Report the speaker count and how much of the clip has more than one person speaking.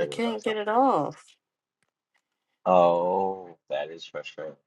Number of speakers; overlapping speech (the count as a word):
two, about 12%